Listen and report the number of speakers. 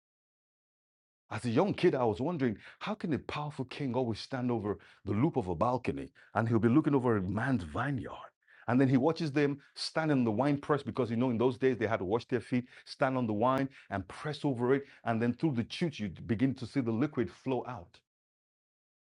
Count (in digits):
1